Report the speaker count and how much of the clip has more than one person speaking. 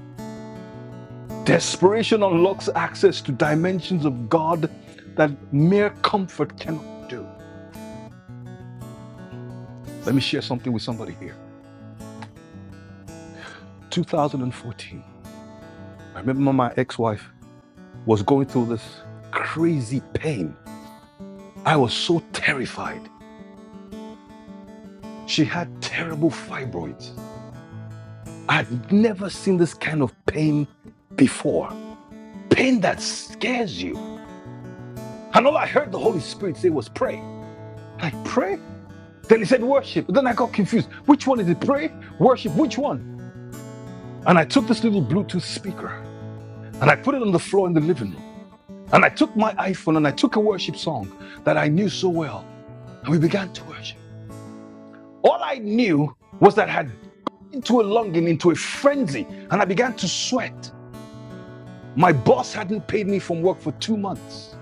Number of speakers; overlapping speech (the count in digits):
1, no overlap